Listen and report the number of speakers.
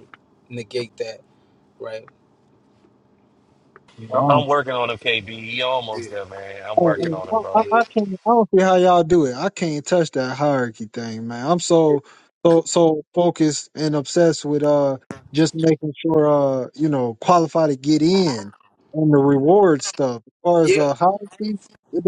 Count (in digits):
3